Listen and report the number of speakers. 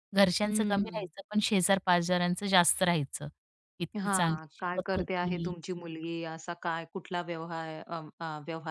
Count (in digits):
2